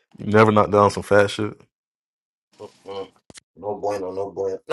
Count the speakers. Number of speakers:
2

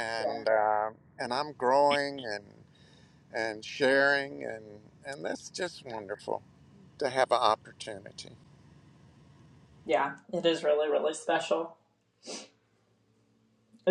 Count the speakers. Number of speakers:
2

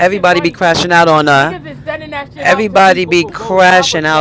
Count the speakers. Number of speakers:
2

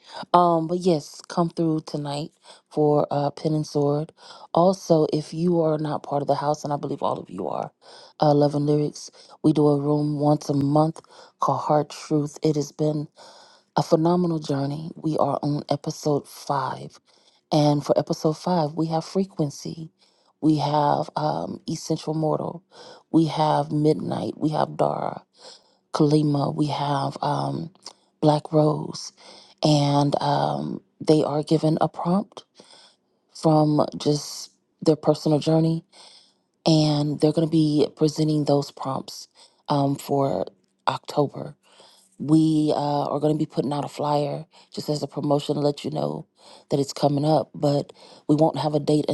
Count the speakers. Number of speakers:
1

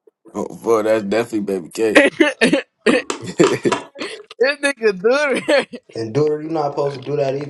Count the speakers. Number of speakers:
3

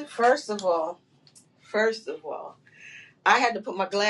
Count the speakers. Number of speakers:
1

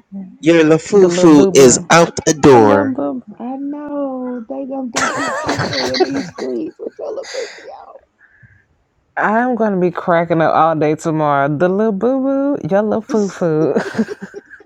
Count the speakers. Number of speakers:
3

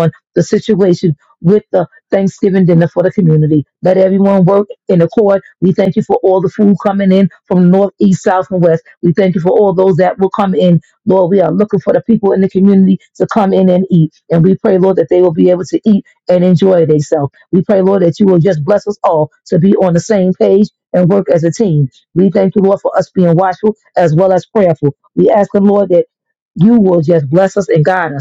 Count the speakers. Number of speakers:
1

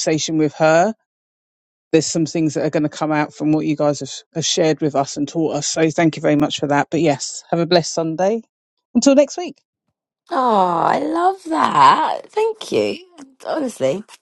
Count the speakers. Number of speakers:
2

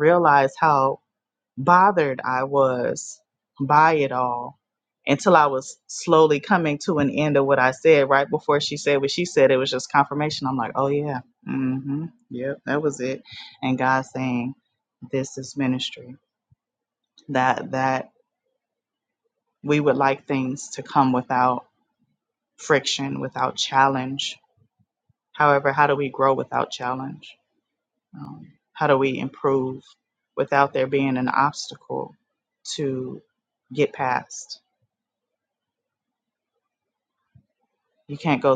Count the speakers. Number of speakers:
1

